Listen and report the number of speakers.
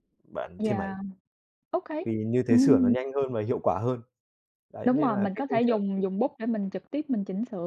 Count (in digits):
2